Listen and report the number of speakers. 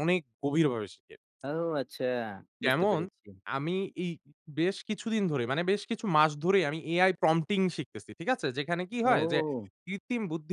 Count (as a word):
two